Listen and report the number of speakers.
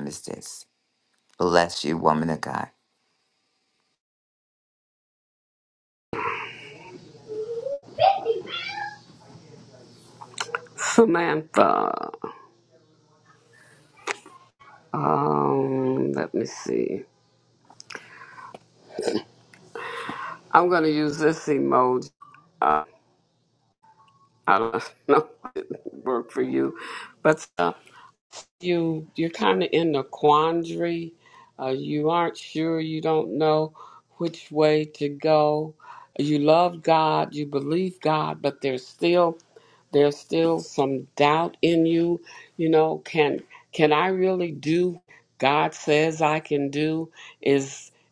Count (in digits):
2